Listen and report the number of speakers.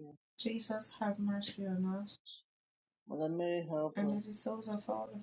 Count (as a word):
two